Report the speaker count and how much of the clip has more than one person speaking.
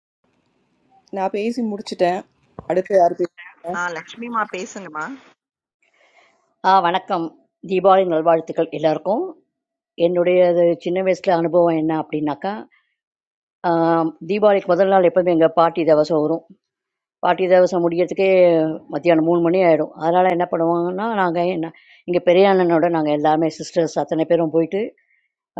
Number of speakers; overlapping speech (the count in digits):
3, no overlap